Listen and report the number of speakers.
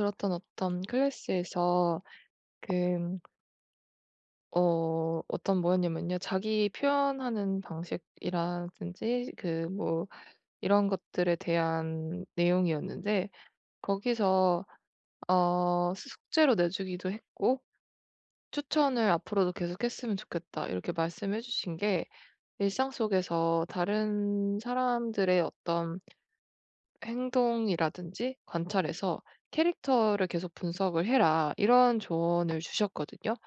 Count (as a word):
one